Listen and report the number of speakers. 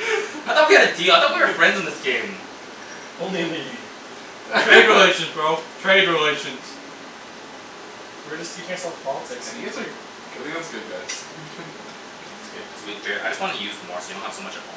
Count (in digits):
4